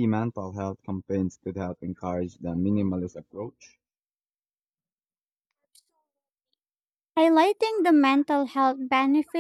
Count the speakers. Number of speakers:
2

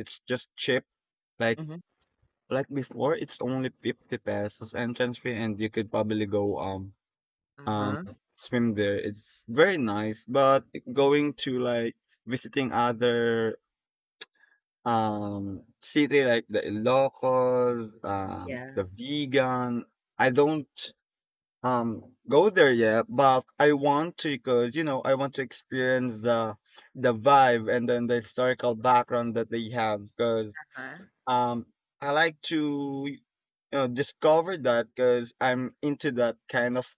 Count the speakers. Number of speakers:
2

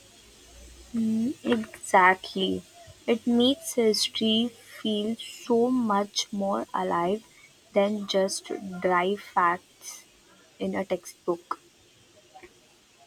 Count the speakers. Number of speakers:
1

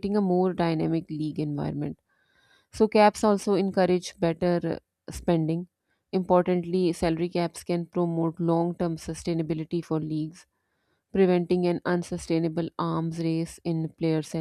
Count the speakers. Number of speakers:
1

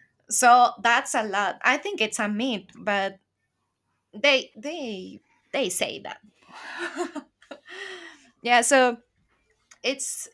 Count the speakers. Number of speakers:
1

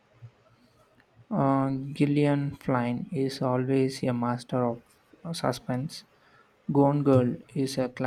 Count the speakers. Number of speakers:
1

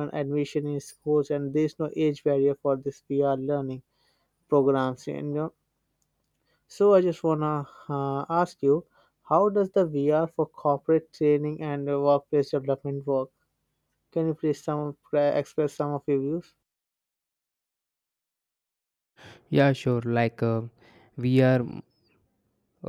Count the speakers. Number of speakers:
2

